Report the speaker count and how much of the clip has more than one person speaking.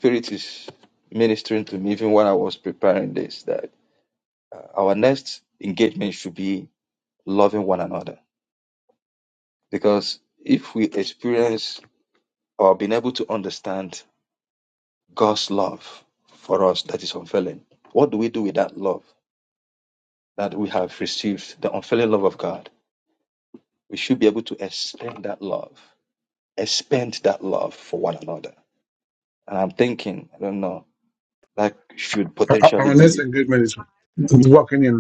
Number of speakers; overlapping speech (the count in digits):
2, about 2%